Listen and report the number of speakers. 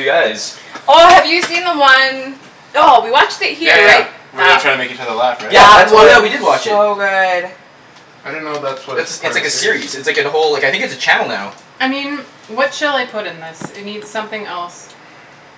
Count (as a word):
four